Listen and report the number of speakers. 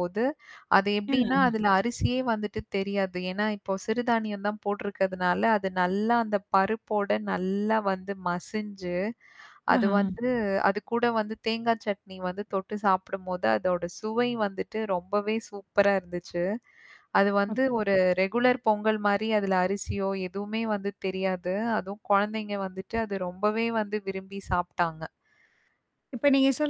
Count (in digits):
2